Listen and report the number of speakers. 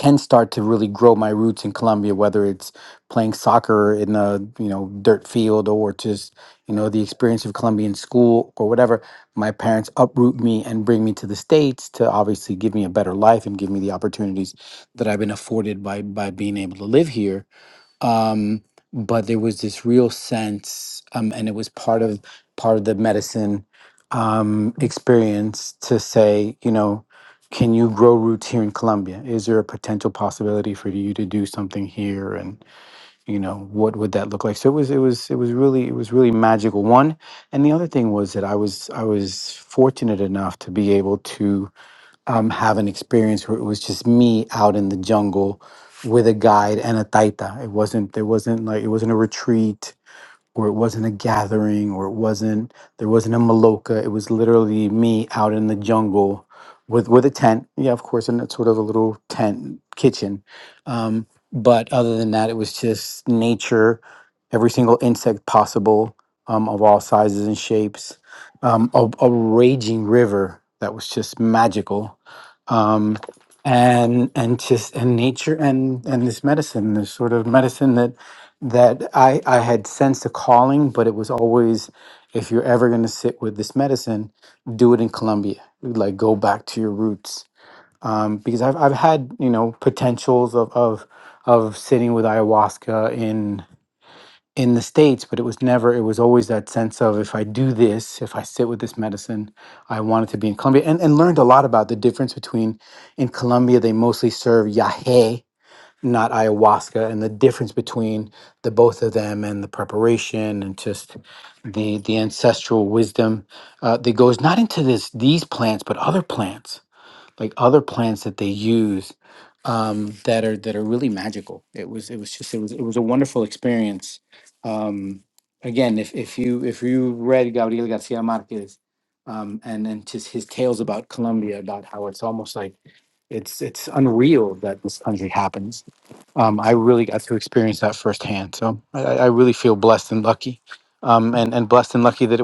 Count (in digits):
1